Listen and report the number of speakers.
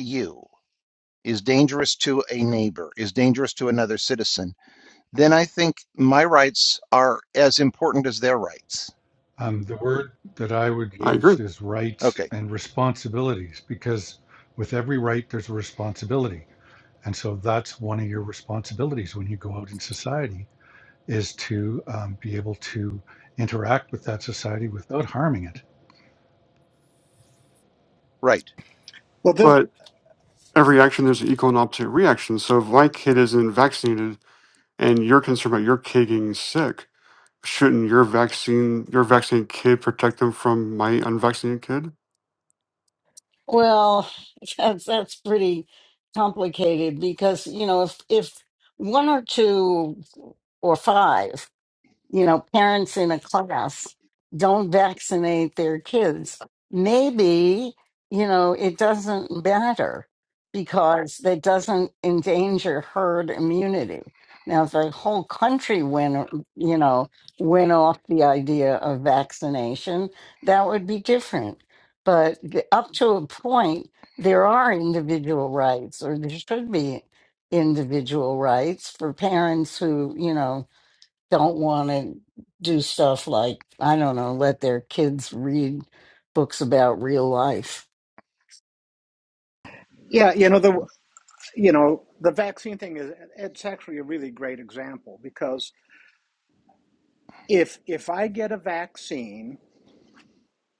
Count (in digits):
5